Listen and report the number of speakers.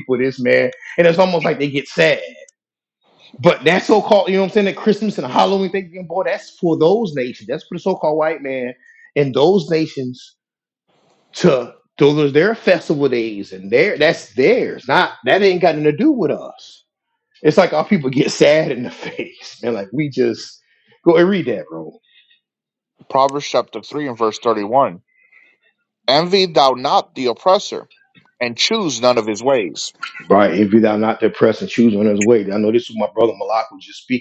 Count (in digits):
2